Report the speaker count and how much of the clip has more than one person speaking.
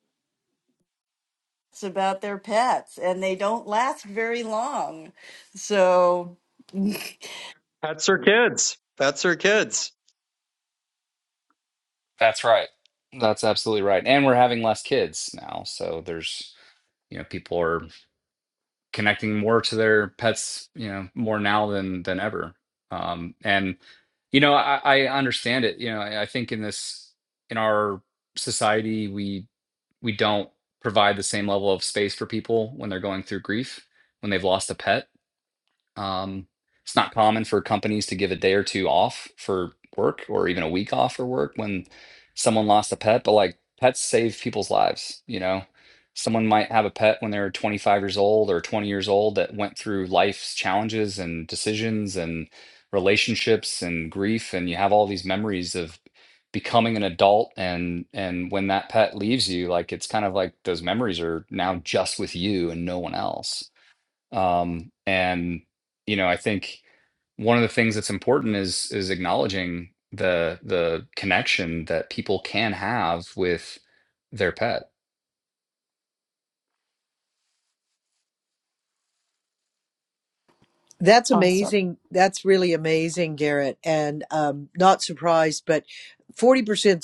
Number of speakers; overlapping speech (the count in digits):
4, under 1%